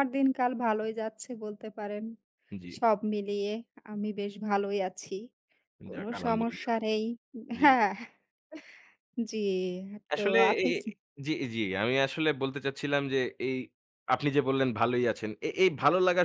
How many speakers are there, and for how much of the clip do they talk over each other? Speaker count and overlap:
2, about 11%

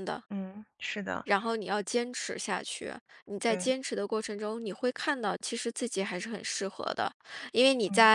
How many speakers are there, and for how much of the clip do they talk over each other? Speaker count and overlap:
2, about 5%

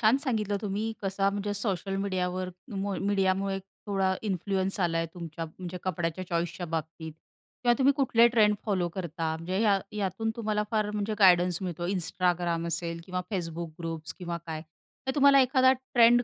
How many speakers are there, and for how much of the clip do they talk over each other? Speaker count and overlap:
1, no overlap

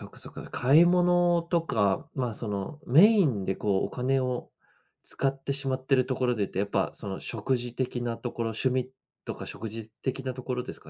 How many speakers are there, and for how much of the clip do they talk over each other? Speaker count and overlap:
1, no overlap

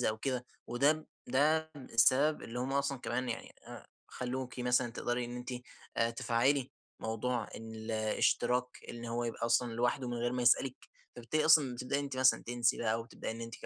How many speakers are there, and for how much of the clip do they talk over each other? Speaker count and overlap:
1, no overlap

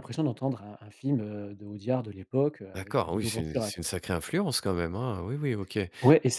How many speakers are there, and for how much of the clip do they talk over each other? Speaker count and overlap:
2, about 16%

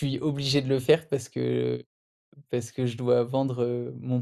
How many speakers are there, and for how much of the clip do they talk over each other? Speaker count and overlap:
1, no overlap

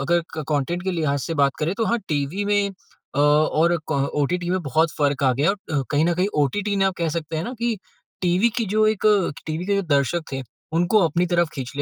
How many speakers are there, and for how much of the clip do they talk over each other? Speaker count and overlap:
1, no overlap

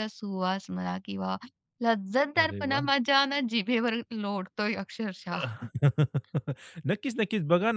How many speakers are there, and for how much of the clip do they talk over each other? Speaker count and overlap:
2, about 6%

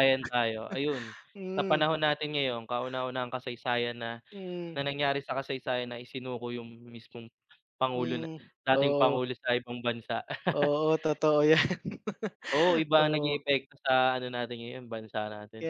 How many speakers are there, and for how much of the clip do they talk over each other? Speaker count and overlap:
2, about 10%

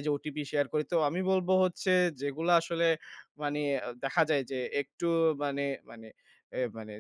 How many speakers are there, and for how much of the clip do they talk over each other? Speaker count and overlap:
1, no overlap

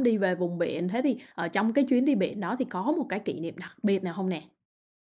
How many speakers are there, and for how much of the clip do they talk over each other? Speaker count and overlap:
1, no overlap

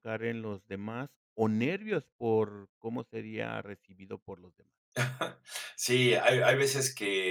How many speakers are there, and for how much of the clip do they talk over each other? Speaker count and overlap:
2, no overlap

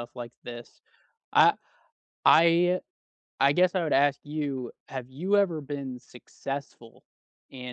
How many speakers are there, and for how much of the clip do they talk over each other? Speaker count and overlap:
1, no overlap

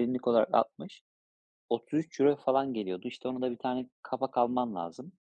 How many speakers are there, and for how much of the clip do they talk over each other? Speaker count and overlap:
1, no overlap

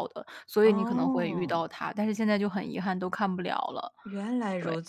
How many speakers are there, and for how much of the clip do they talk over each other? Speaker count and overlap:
2, about 22%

